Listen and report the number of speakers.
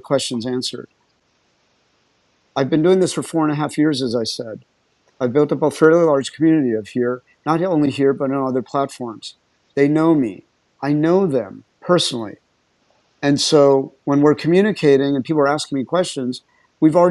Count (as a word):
one